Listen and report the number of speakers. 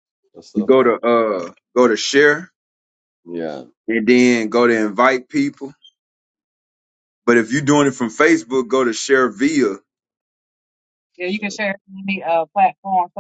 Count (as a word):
three